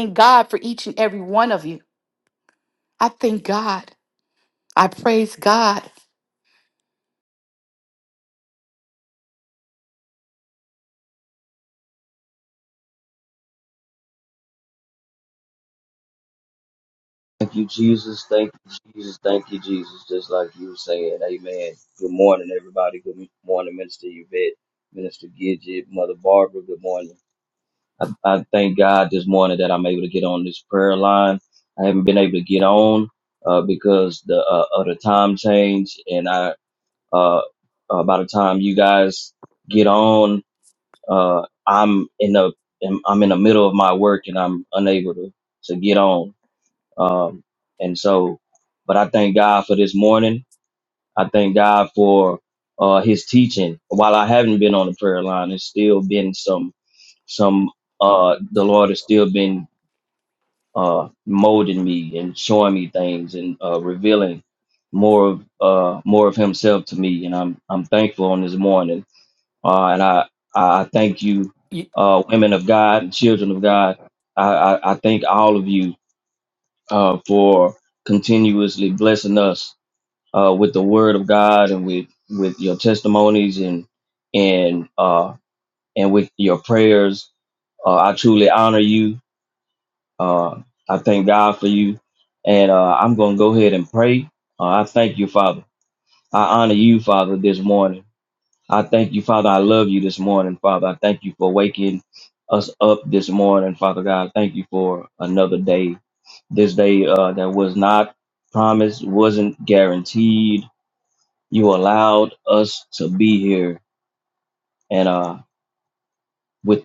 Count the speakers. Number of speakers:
2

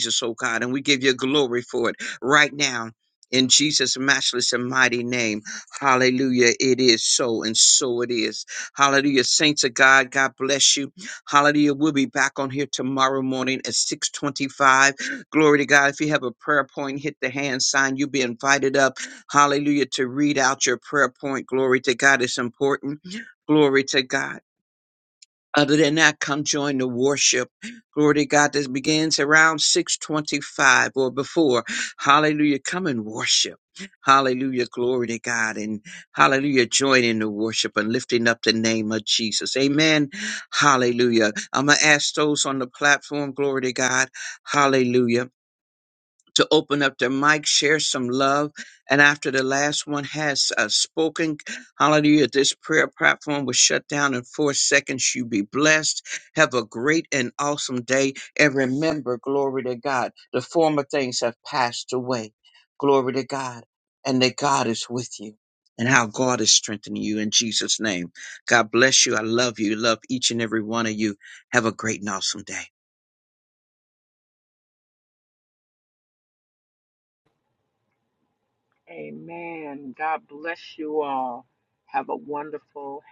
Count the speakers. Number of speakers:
2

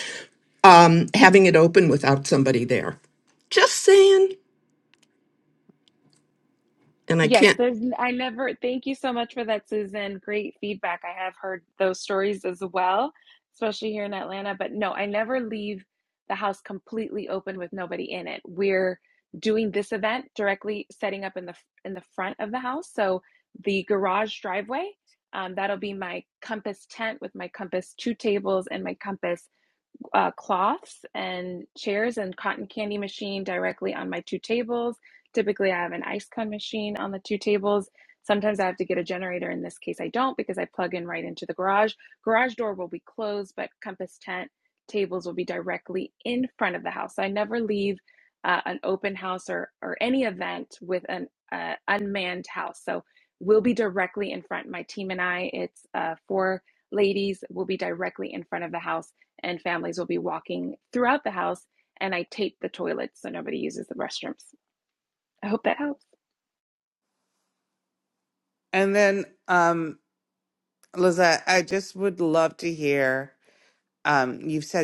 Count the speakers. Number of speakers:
3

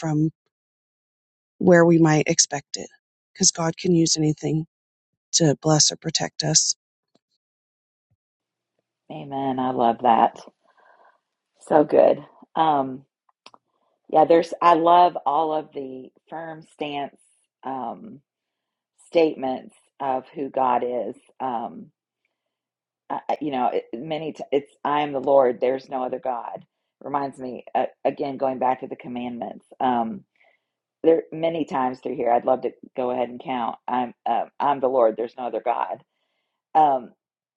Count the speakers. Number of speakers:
2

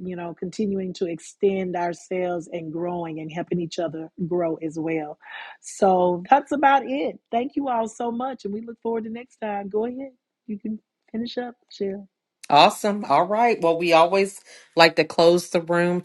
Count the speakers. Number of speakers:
2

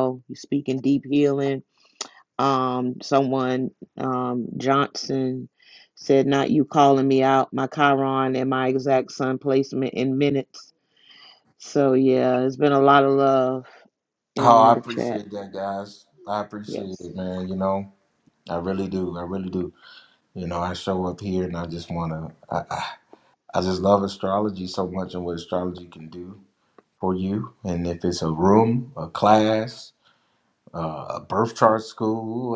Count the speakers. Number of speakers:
2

